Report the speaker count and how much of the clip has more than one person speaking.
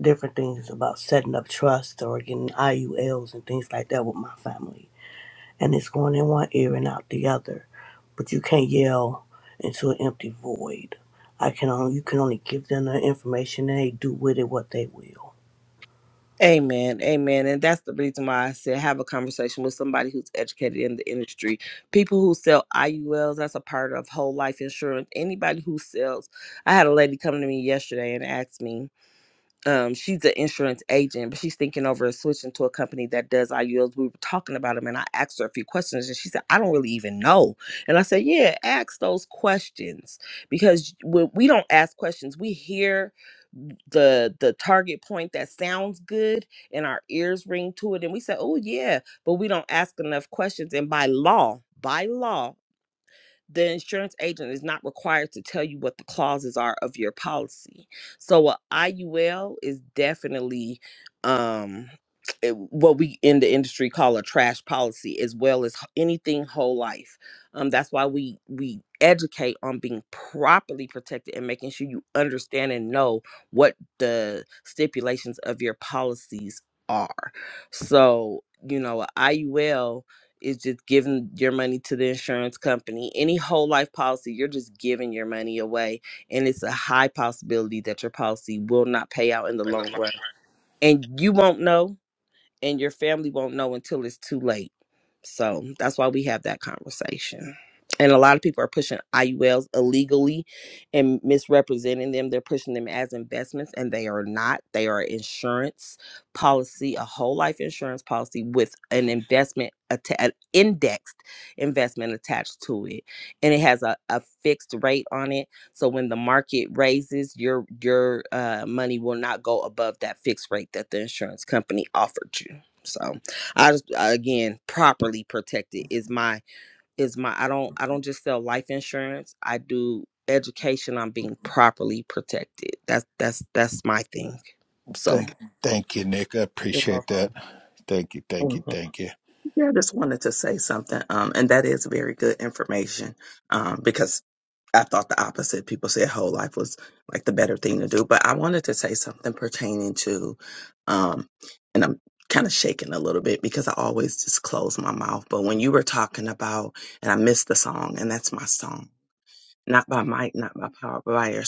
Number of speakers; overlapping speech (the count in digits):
4, about 1%